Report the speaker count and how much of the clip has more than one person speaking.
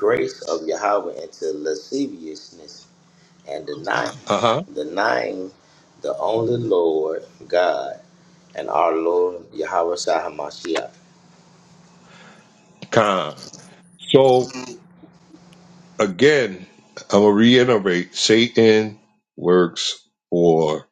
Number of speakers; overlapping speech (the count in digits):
2, no overlap